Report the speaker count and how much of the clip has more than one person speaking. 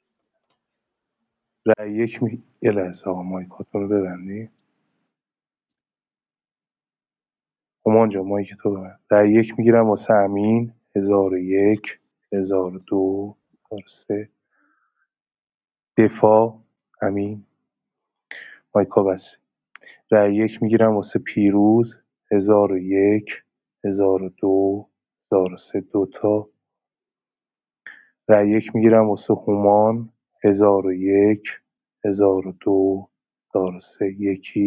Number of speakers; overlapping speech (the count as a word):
one, no overlap